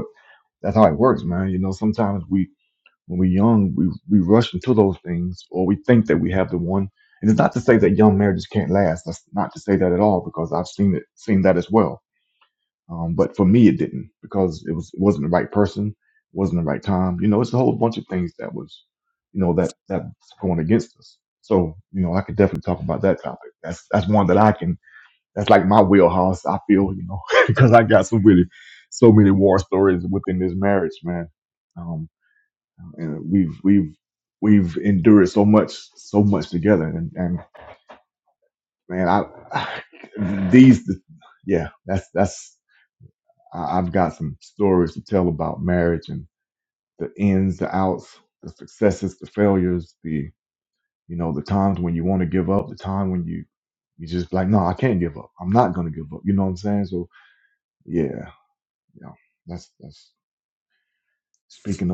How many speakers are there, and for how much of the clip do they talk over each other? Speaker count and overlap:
1, no overlap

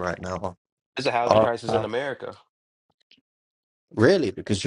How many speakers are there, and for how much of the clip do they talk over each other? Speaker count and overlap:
2, about 14%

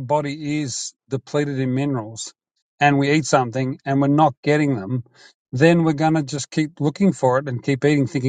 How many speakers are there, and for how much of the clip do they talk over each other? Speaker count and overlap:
1, no overlap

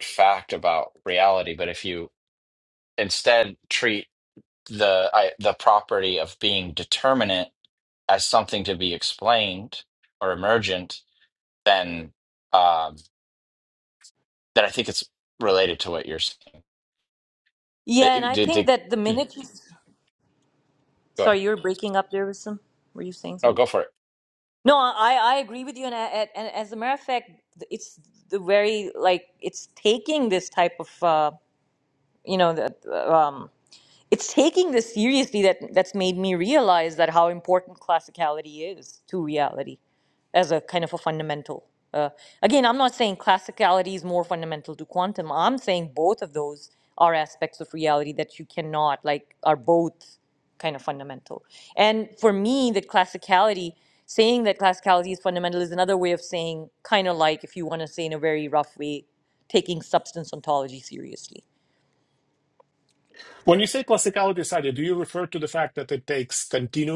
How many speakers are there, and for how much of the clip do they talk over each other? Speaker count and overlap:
3, about 1%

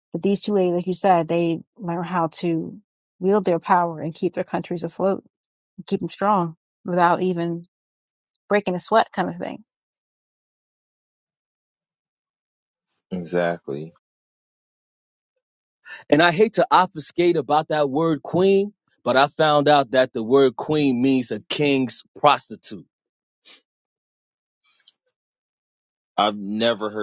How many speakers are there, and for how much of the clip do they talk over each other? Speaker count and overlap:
3, no overlap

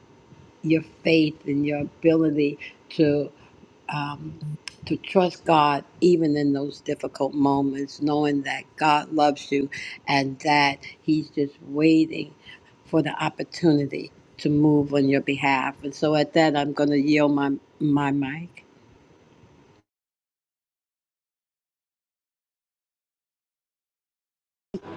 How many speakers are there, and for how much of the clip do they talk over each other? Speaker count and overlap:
1, no overlap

